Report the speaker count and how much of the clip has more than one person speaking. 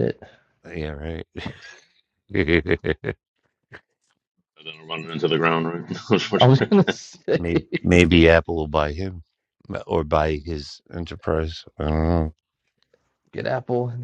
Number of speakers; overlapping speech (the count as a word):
three, about 1%